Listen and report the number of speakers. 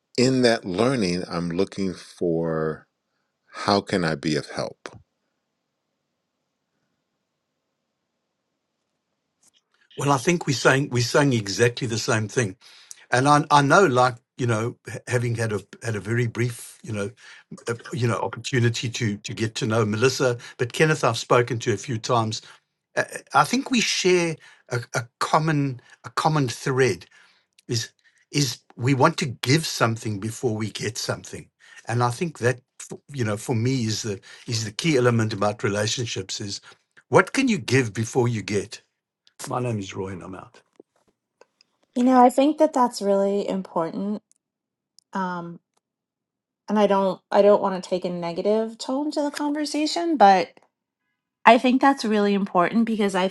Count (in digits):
3